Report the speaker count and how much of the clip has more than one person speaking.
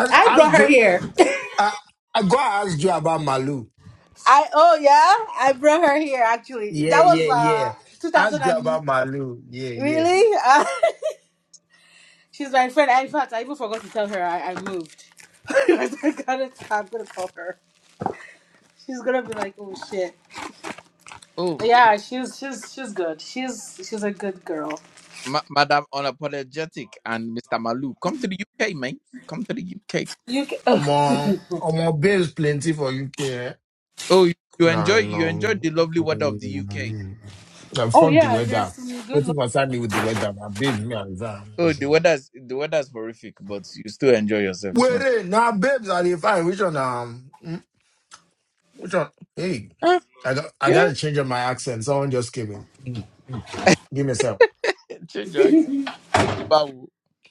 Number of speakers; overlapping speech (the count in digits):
3, about 12%